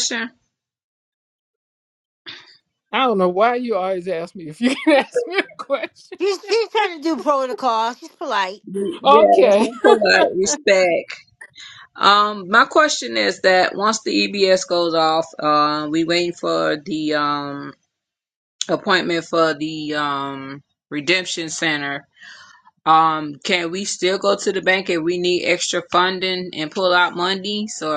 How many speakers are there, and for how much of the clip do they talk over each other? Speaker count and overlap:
3, about 3%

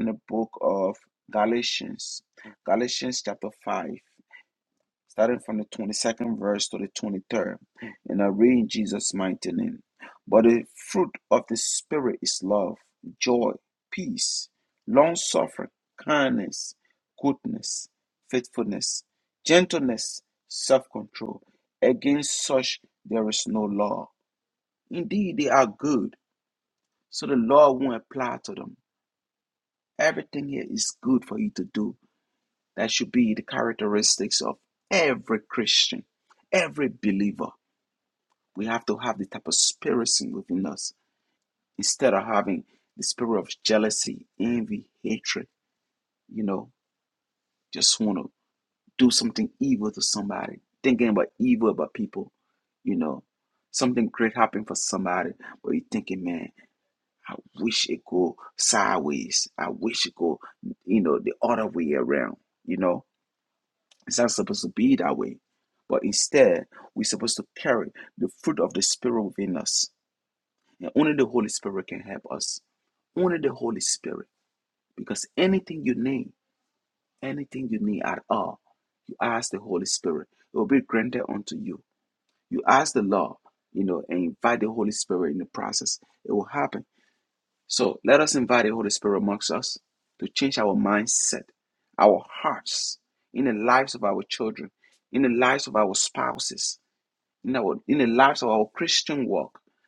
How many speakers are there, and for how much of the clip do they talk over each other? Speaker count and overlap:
1, no overlap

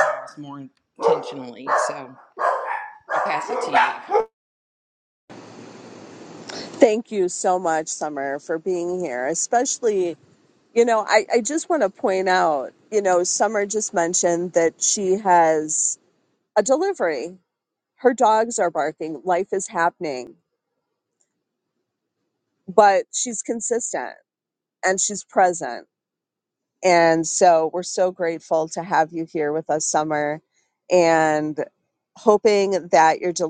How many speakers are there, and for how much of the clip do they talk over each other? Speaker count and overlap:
2, no overlap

